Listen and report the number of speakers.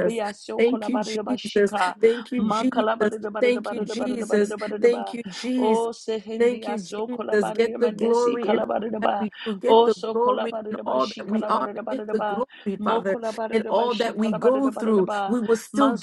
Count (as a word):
two